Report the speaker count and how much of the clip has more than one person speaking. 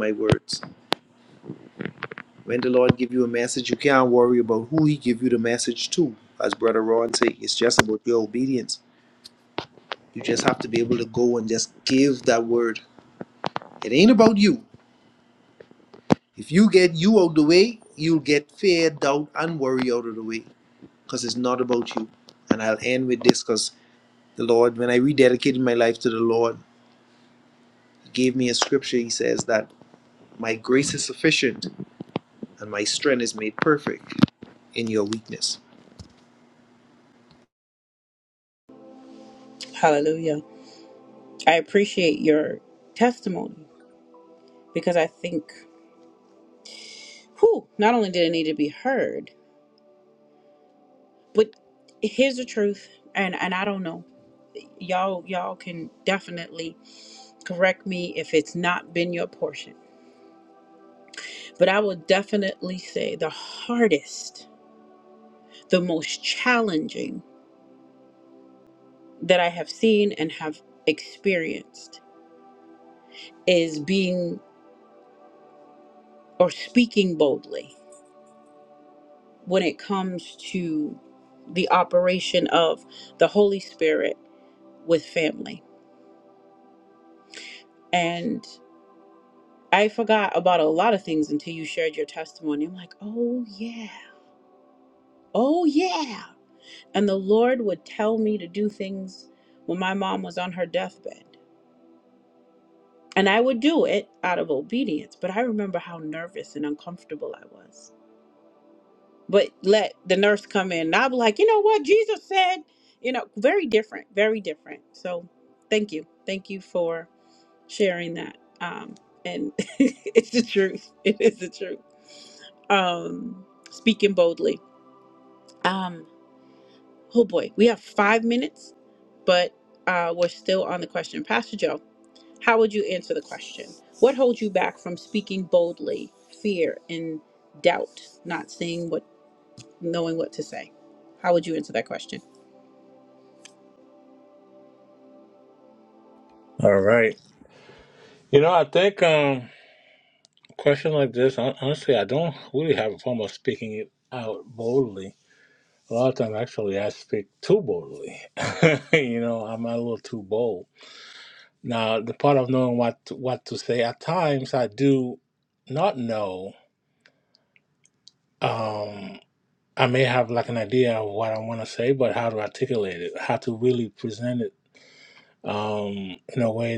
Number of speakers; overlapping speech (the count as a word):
three, no overlap